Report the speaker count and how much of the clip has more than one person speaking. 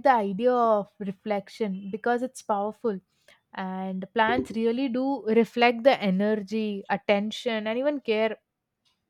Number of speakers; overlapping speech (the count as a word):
one, no overlap